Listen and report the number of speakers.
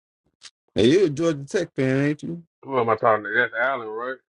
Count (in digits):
2